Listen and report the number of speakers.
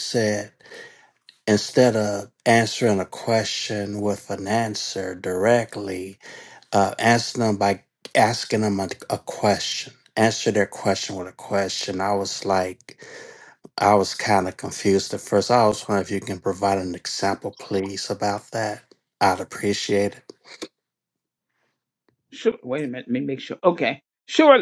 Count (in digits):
2